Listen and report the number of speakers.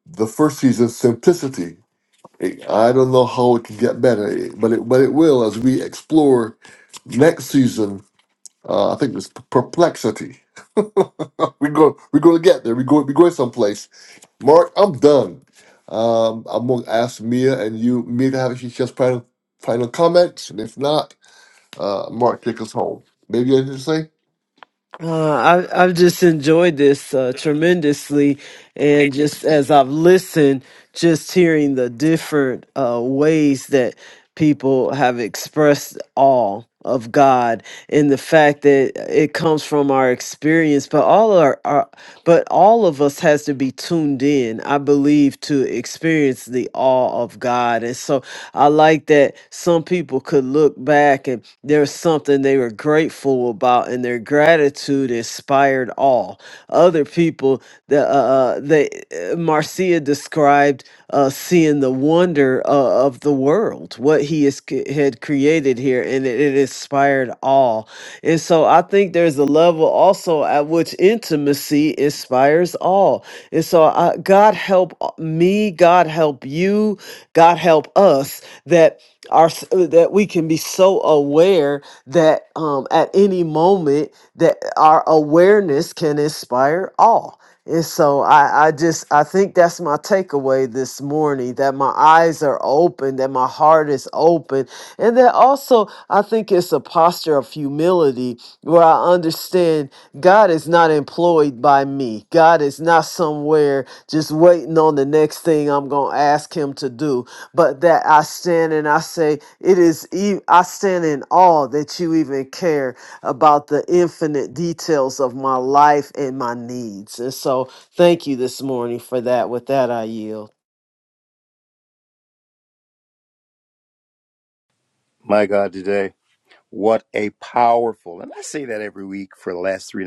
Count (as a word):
three